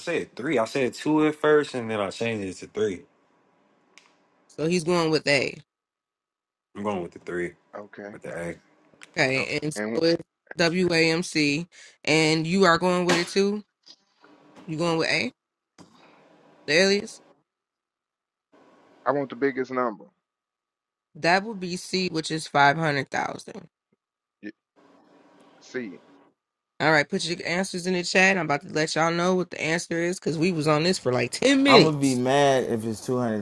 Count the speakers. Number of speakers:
4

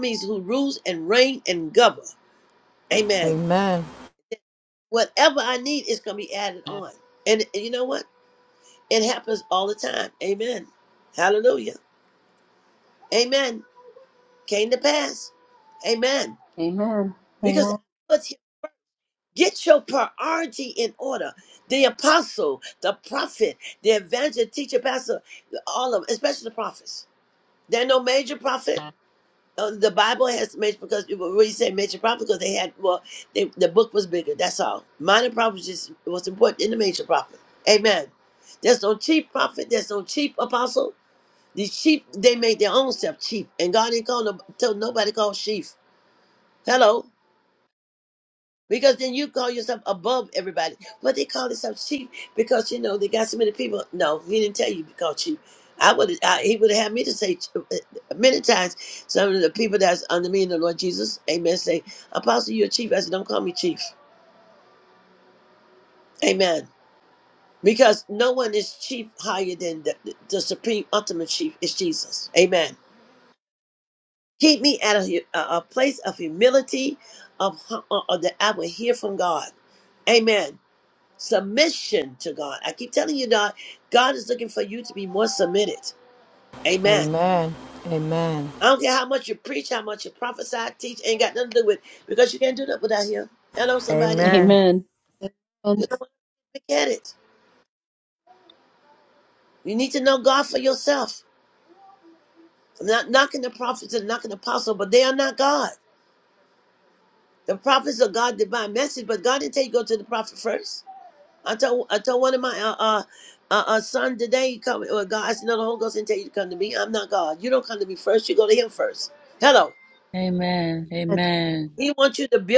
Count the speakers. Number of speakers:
4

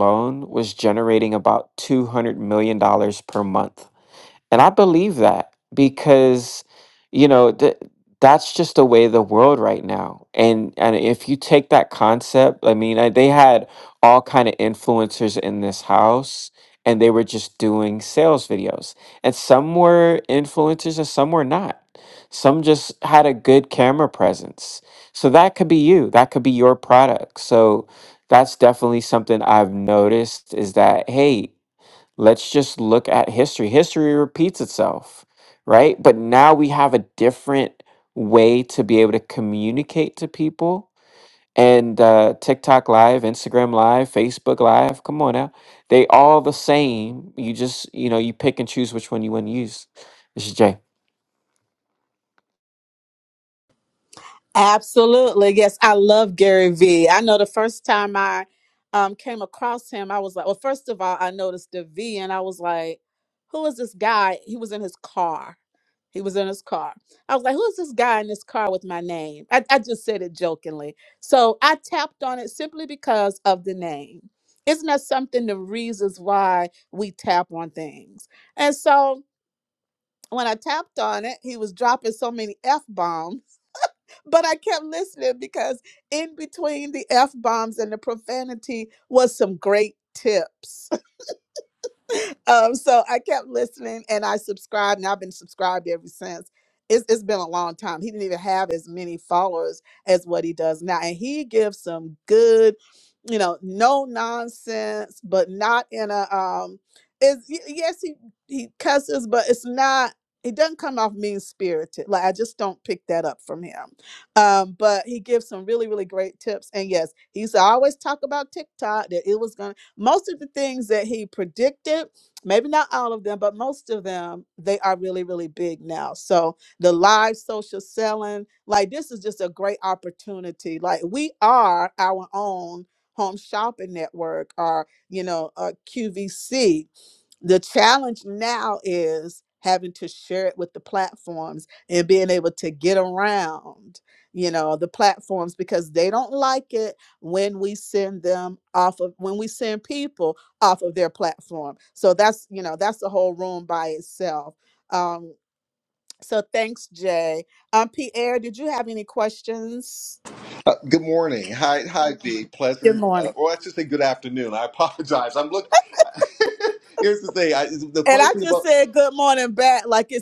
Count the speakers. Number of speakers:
3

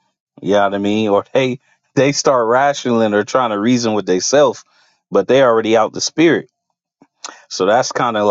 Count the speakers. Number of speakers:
1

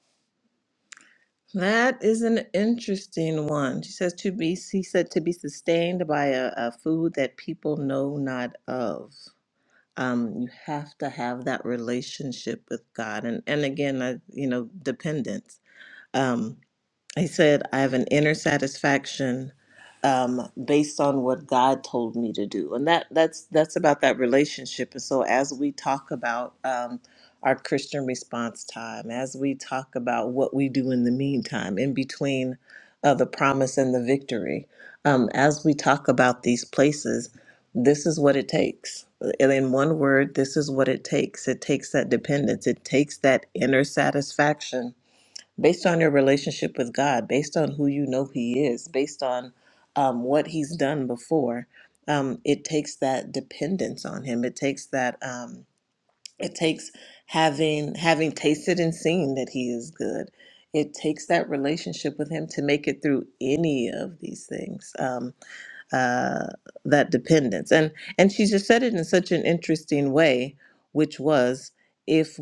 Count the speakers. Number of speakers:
1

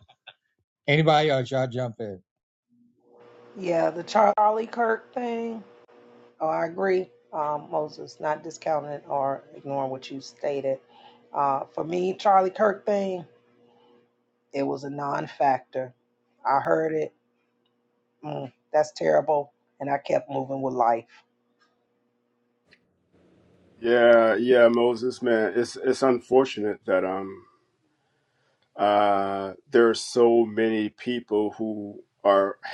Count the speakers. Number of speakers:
3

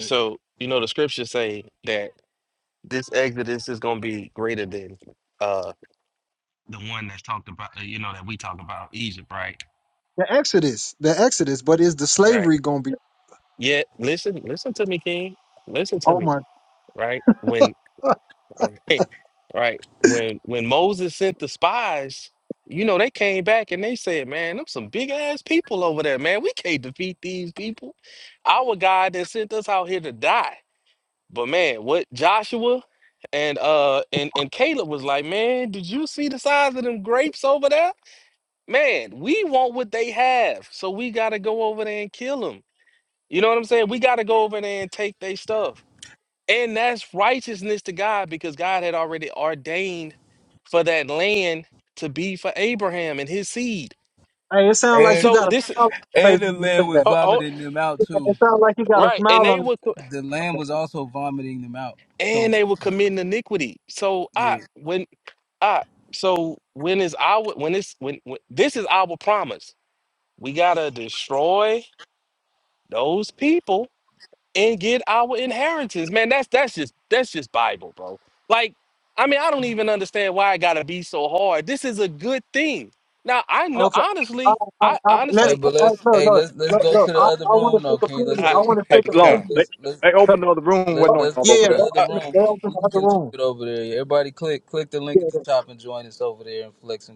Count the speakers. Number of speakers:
4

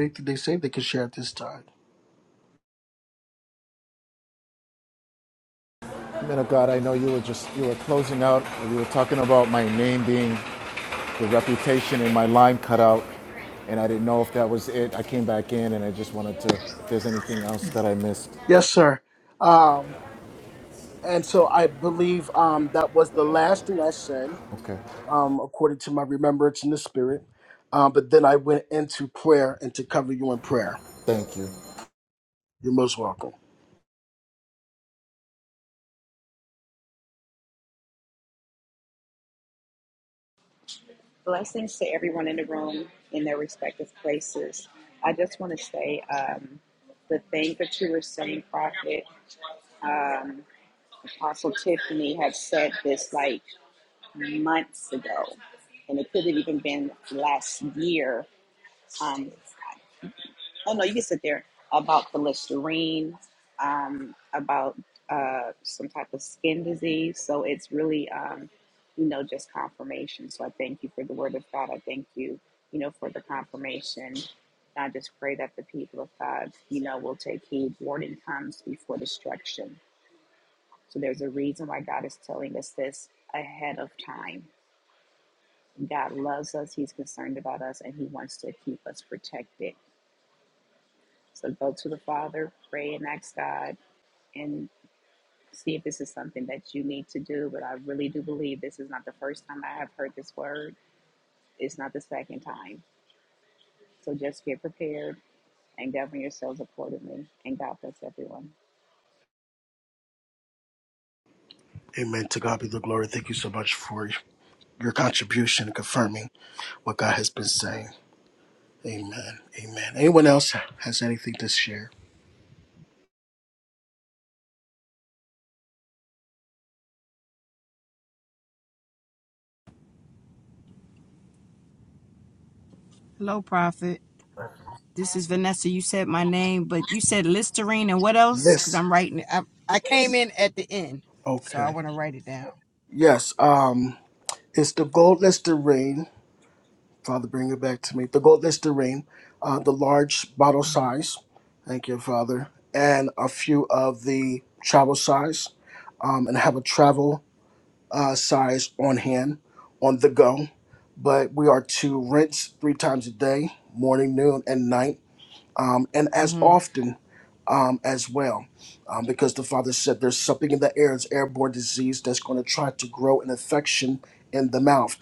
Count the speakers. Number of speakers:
4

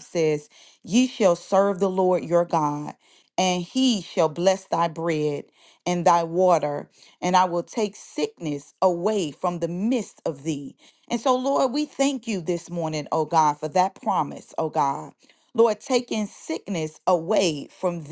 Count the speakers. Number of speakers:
1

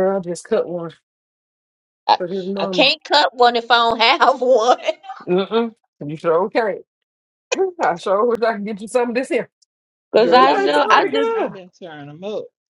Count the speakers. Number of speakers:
3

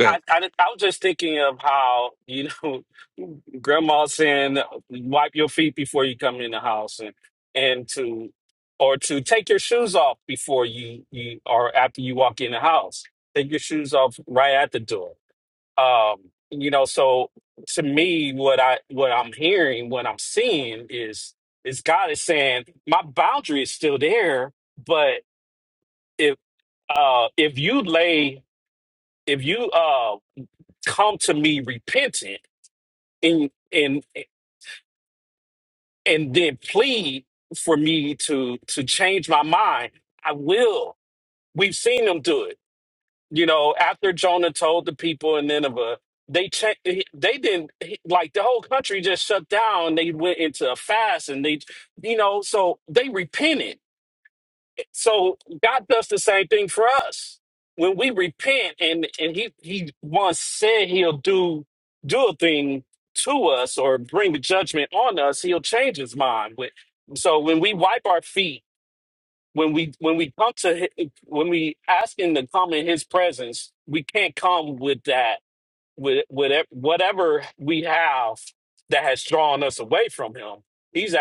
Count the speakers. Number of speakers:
1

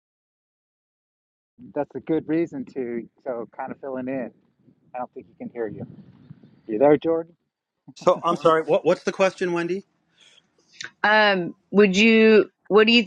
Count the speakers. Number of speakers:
3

